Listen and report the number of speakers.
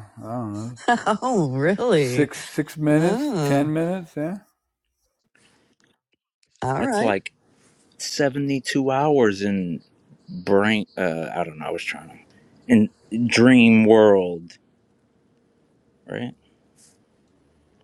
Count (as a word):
three